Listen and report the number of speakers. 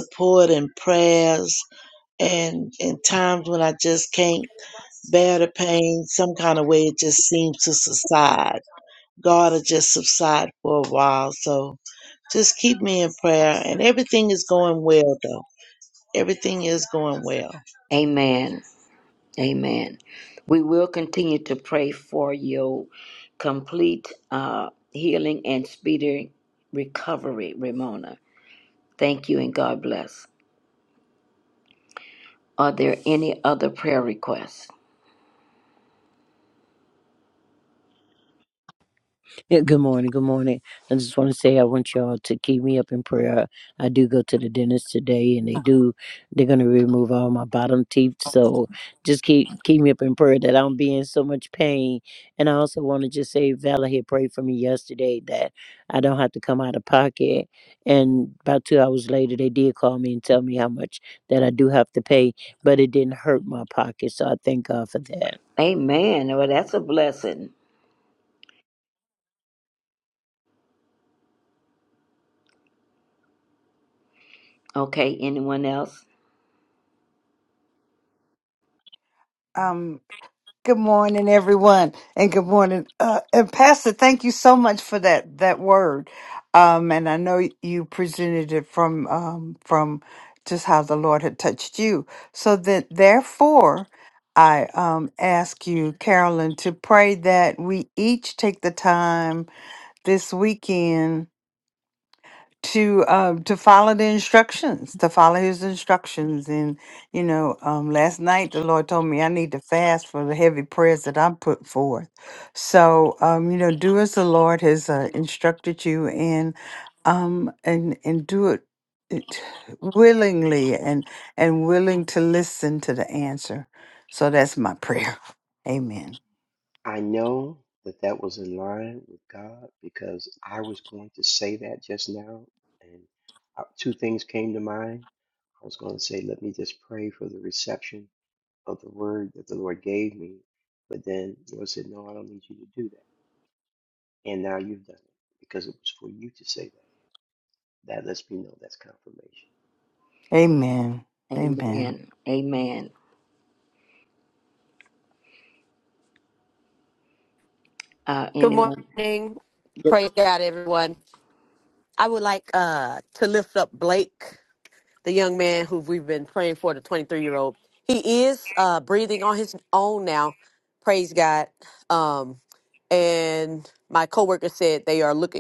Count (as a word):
six